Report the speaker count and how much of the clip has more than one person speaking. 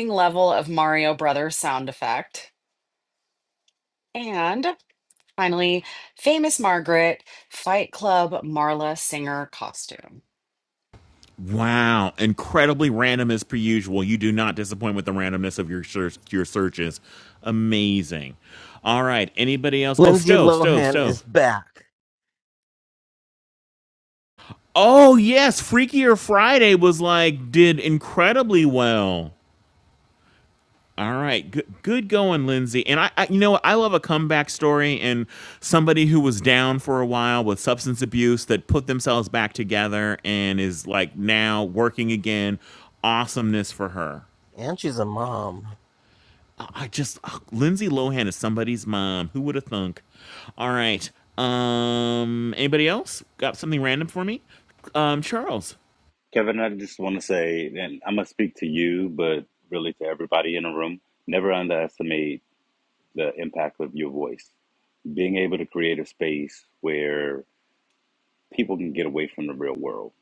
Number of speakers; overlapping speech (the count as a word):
four, about 2%